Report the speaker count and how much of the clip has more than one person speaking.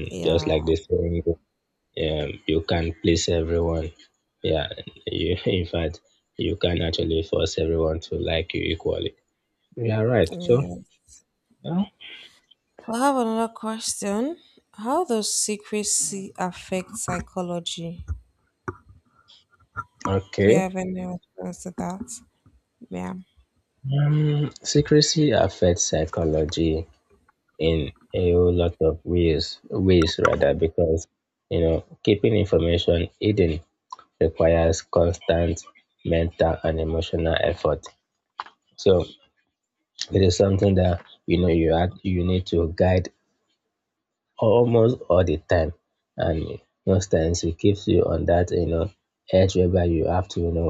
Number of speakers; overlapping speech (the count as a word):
two, about 2%